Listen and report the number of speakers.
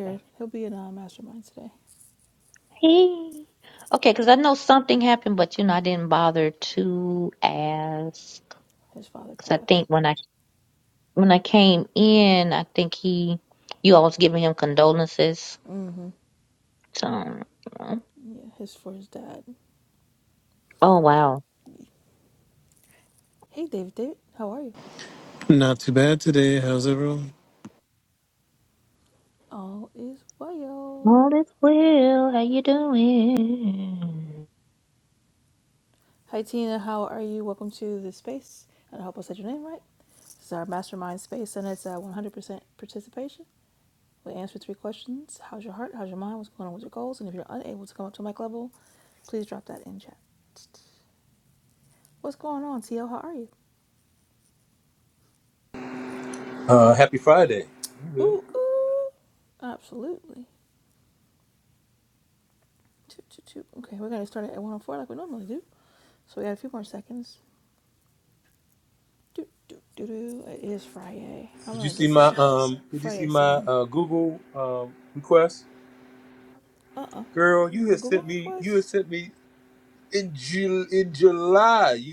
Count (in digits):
4